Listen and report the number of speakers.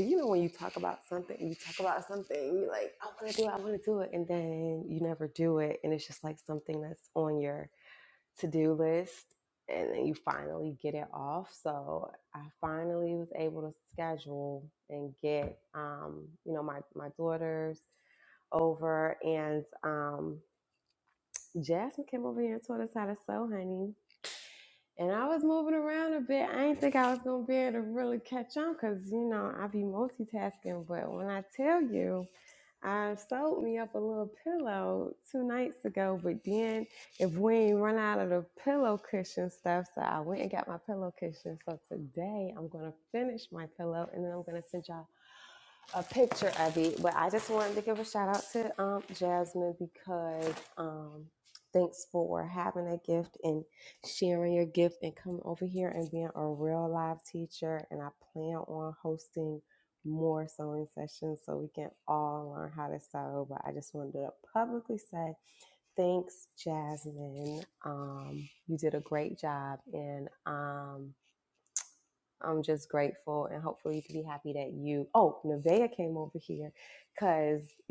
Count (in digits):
1